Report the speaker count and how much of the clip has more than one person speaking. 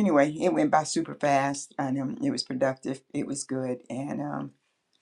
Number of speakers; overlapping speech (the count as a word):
one, no overlap